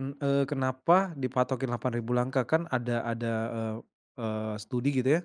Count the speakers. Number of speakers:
one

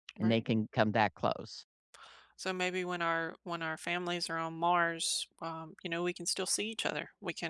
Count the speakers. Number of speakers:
two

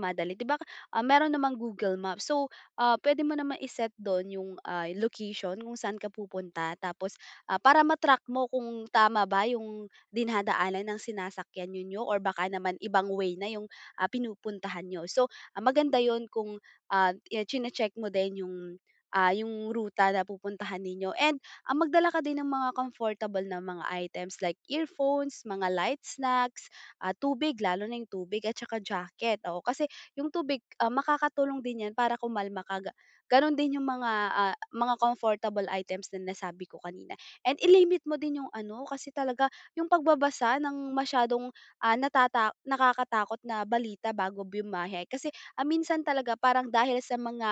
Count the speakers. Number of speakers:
one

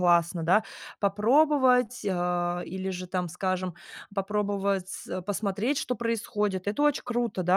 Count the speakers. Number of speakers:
one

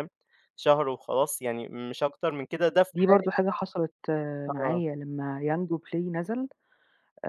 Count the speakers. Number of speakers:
two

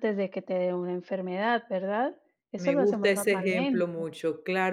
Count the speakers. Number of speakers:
two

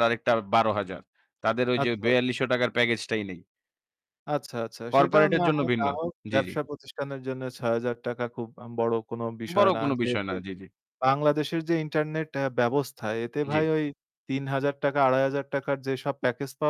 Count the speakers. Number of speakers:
two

